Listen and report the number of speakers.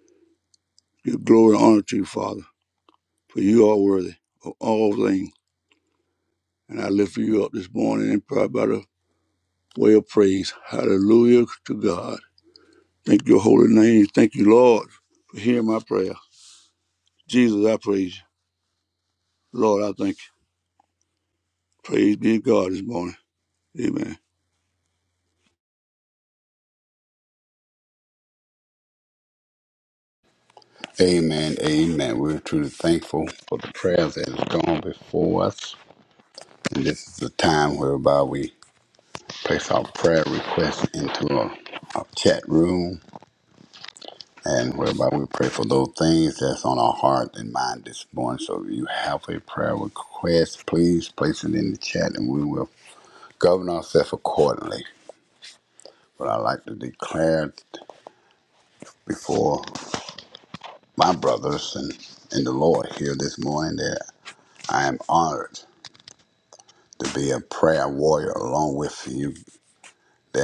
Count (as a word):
two